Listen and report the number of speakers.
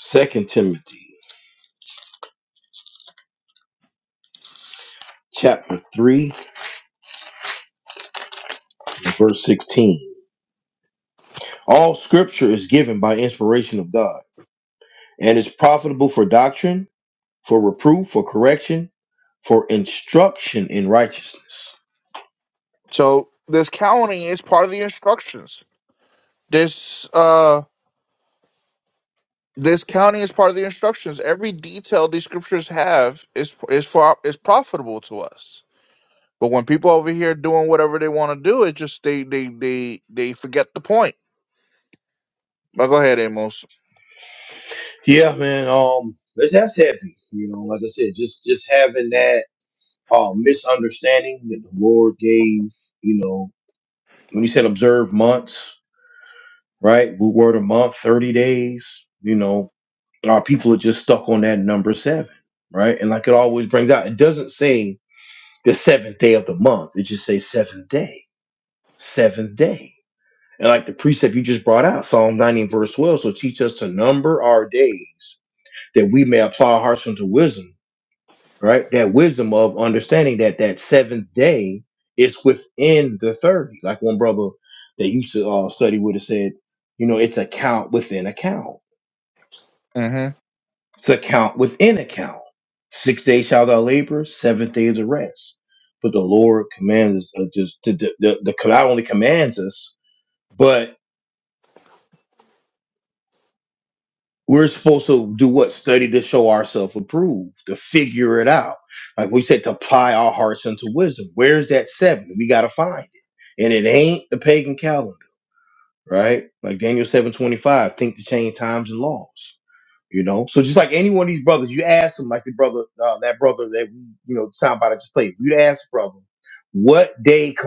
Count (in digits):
2